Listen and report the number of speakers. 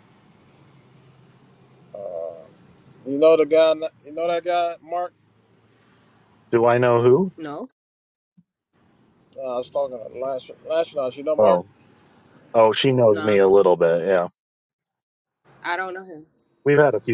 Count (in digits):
3